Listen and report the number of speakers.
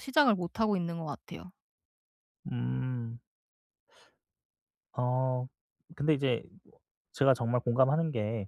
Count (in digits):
2